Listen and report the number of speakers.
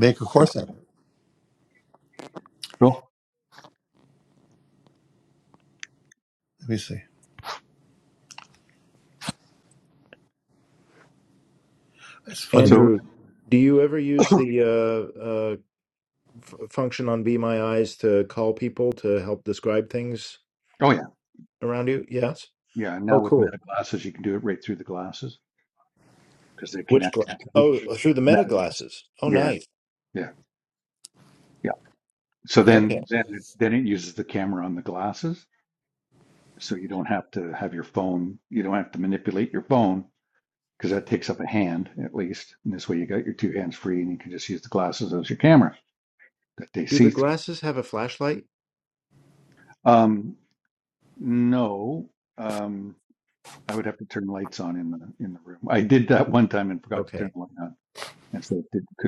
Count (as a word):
three